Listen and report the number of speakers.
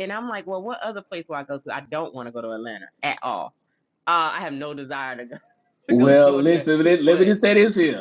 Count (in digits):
2